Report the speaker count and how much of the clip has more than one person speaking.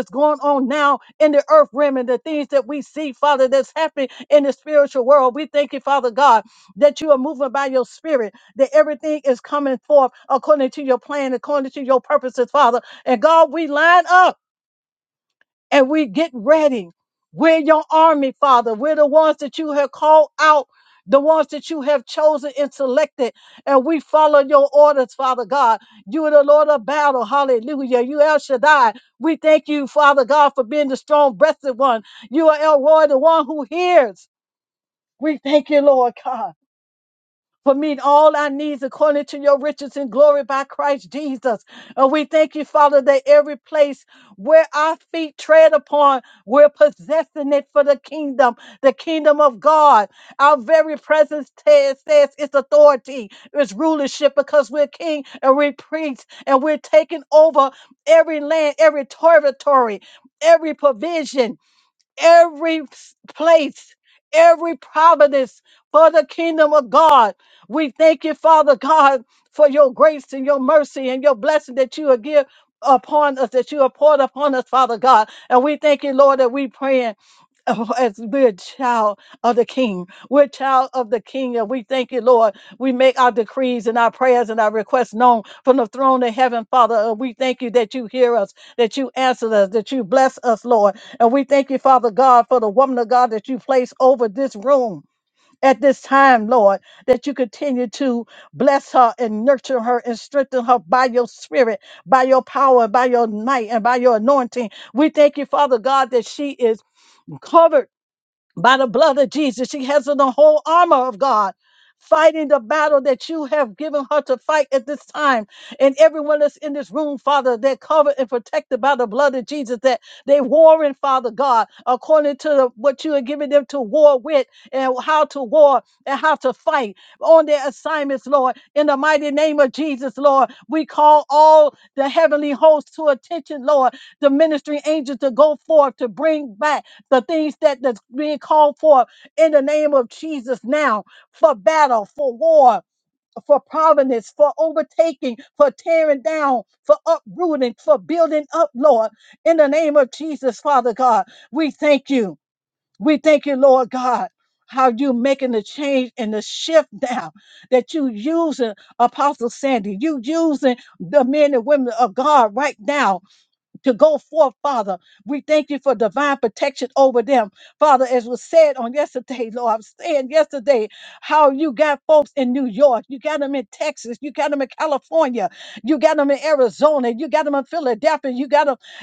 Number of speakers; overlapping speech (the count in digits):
1, no overlap